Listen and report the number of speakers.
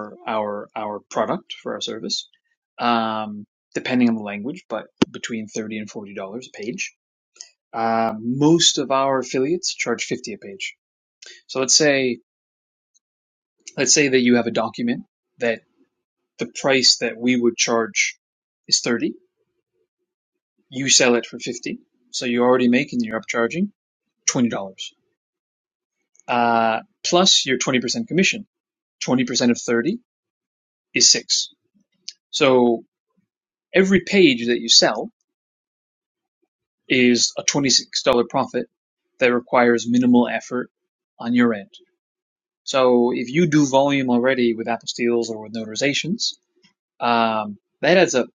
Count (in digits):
1